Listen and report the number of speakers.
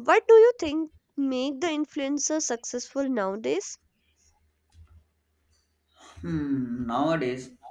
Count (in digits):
2